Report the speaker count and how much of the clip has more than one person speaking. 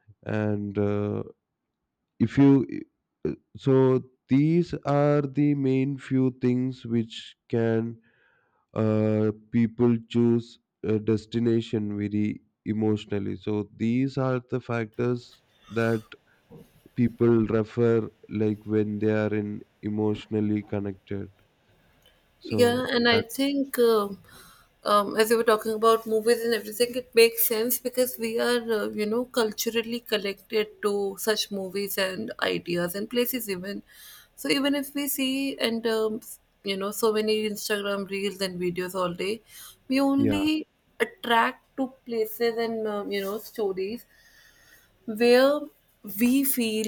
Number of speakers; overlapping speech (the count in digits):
2, about 2%